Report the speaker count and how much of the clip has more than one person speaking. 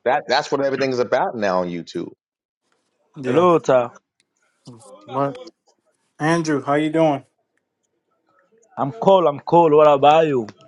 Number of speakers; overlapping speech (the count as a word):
three, about 2%